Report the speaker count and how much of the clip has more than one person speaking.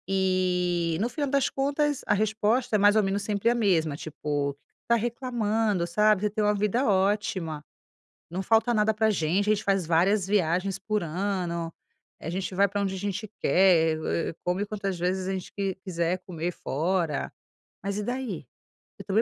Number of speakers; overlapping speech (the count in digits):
1, no overlap